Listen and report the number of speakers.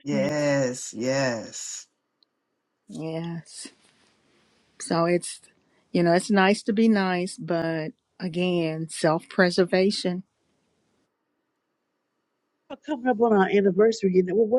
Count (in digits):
3